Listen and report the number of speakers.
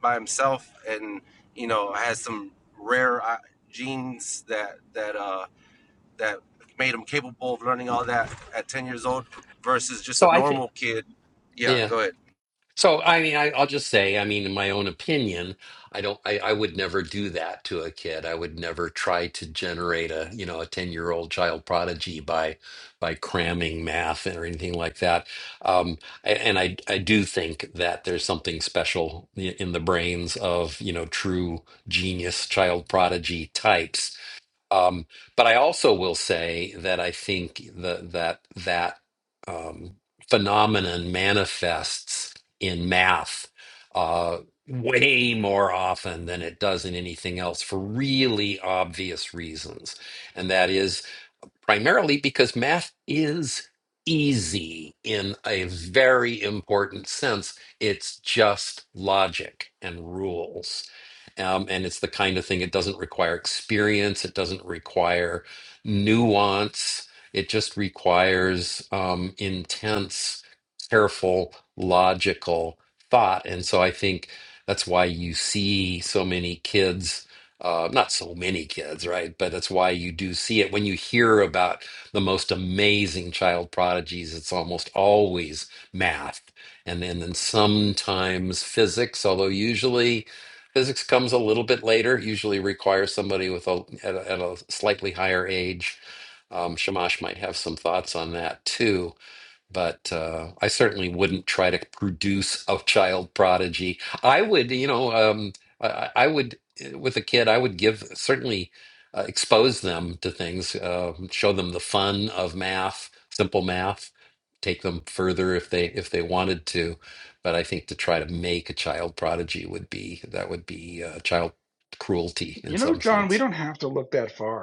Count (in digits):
3